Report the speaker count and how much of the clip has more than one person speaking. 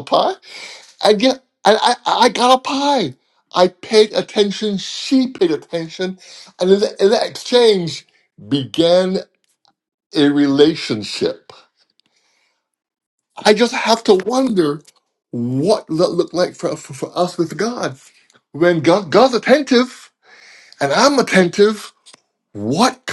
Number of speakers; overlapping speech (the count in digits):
1, no overlap